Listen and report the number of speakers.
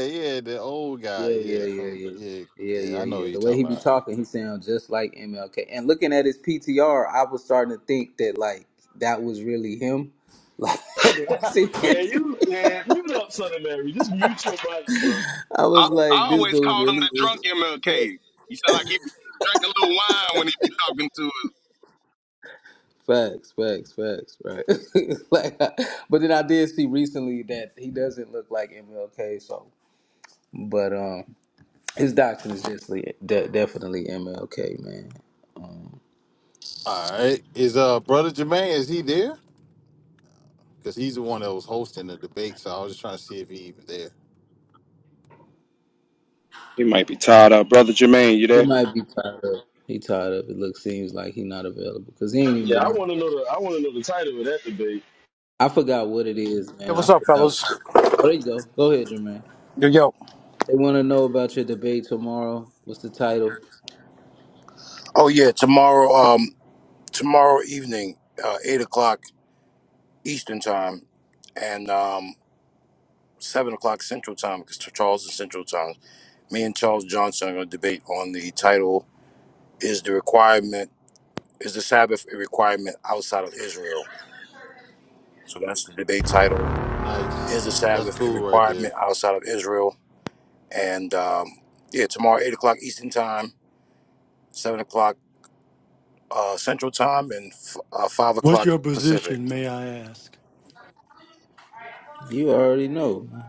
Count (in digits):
7